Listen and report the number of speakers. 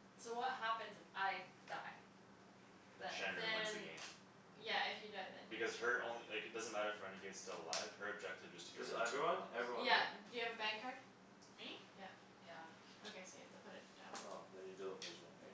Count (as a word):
four